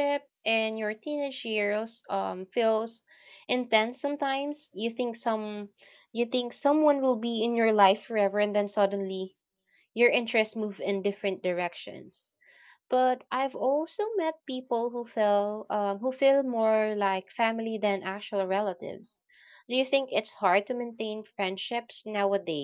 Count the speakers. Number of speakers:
1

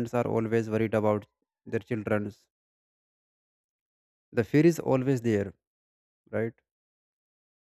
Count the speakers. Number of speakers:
1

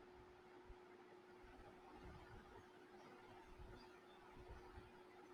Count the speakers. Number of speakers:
0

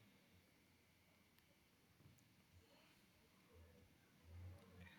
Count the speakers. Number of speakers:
0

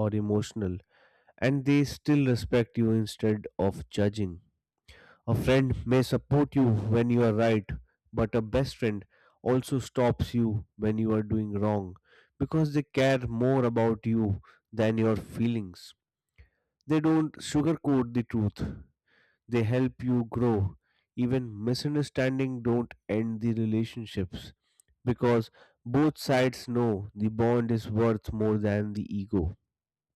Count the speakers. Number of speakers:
1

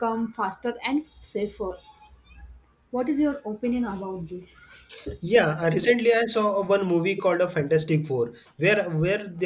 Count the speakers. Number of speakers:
2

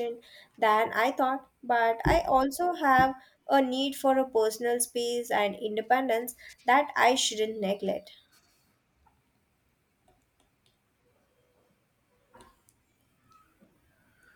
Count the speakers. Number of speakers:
1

